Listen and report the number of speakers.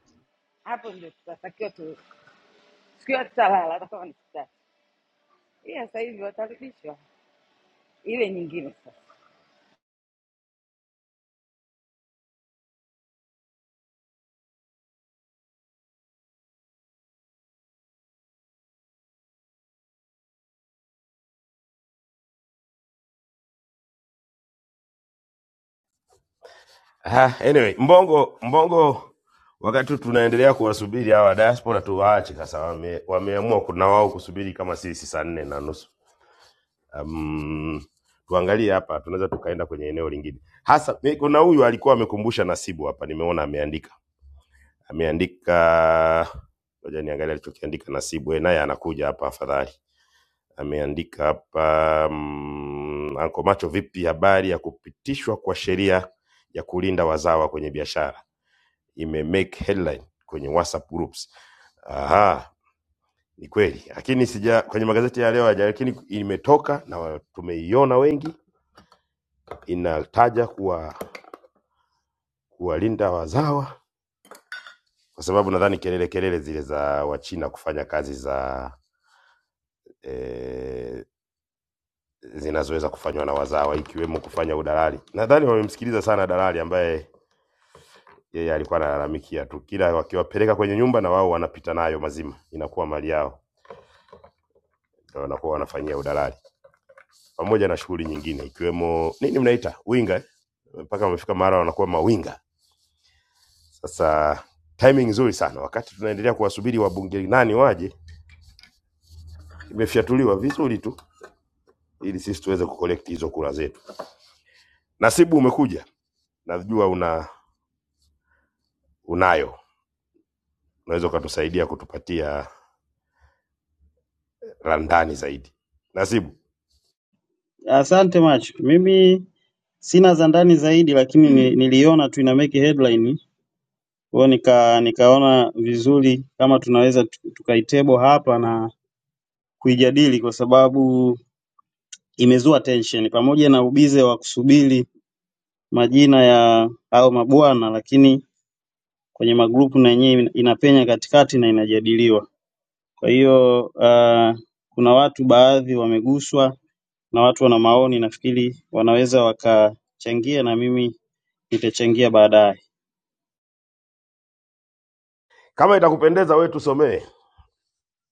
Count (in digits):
3